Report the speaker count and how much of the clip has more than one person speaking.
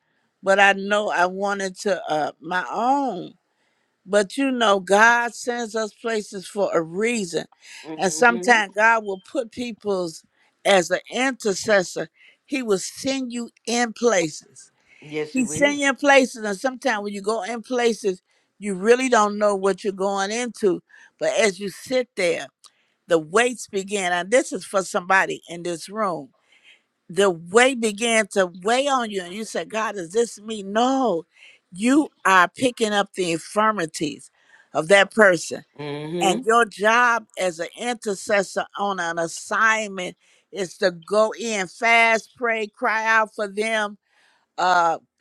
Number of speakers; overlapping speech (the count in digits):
2, about 3%